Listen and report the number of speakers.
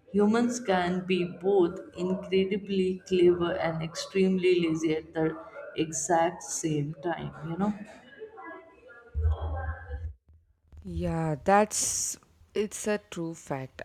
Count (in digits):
2